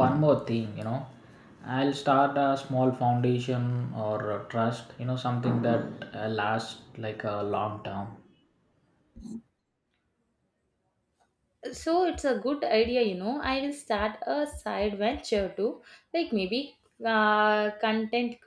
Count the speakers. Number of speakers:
2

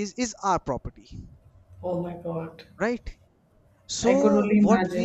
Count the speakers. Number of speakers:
2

